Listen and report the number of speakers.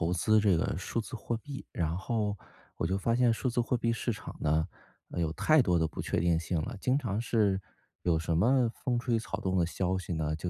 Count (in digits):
1